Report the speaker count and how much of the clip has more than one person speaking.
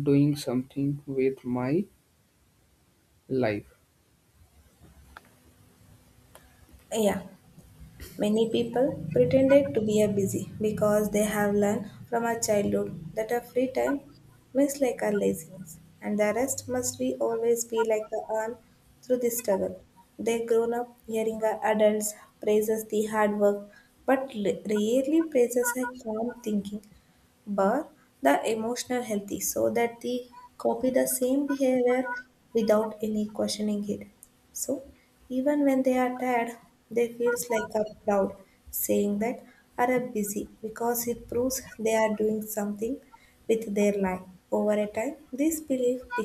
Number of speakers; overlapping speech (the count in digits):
2, no overlap